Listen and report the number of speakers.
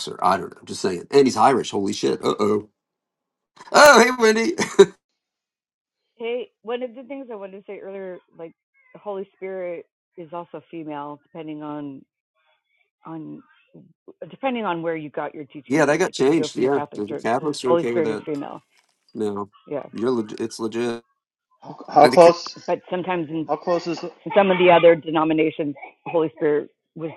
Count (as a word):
three